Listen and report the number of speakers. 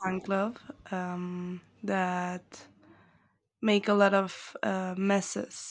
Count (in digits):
1